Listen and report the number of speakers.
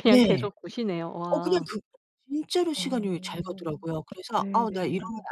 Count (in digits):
2